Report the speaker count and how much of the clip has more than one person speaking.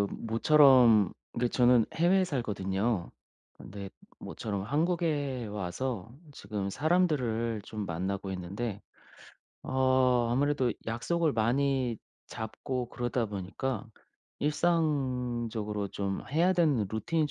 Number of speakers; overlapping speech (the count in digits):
1, no overlap